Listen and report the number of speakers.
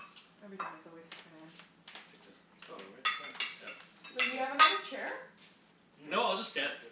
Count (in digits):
3